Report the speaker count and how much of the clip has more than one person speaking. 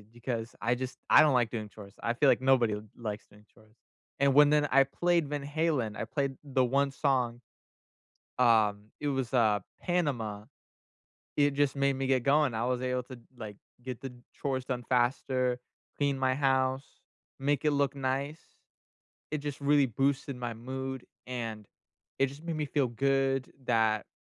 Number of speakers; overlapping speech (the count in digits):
1, no overlap